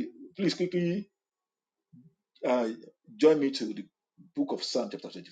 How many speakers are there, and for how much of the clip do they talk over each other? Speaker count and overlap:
one, no overlap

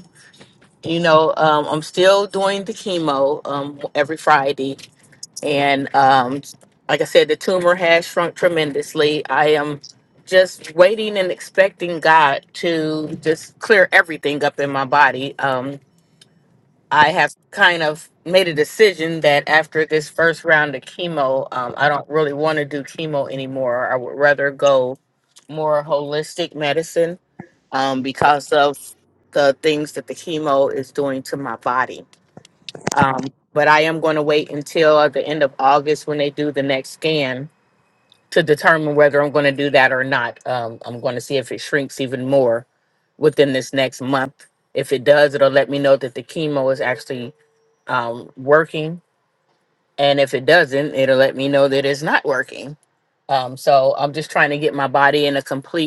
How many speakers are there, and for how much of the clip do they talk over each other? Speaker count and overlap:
one, no overlap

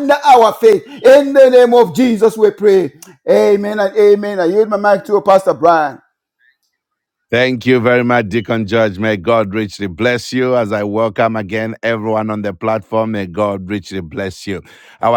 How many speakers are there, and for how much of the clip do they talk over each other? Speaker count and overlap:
two, no overlap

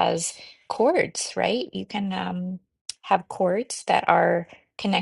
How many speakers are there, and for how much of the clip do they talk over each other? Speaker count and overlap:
one, no overlap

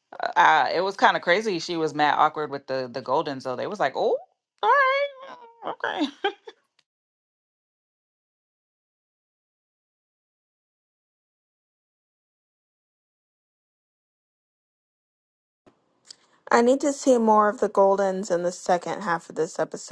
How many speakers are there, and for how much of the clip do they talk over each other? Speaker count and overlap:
two, no overlap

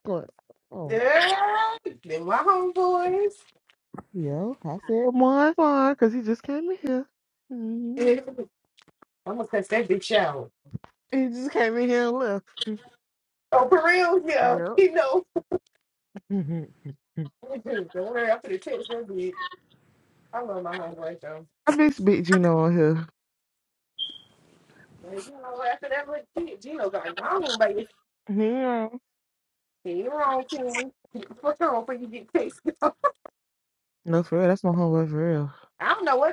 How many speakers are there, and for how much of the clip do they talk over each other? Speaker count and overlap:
two, about 2%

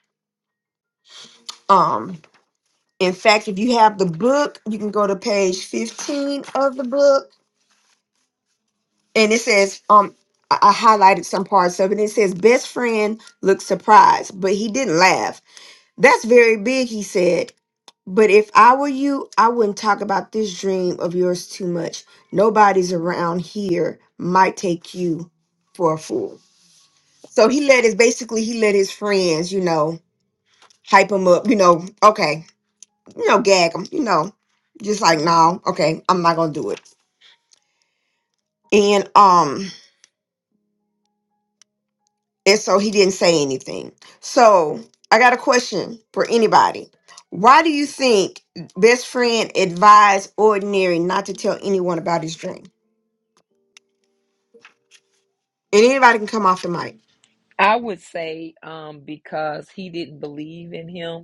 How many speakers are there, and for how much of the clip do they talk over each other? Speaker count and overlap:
two, no overlap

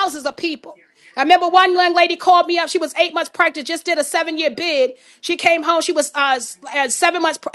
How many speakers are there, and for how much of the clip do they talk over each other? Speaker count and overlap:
one, no overlap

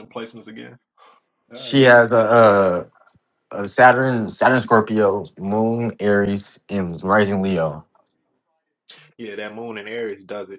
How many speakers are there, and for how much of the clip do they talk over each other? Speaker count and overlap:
two, about 4%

